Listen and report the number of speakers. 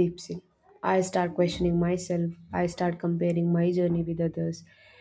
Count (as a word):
one